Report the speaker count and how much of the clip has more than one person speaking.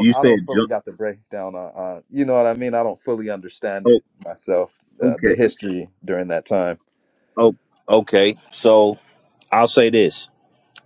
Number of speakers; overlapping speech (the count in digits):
2, about 11%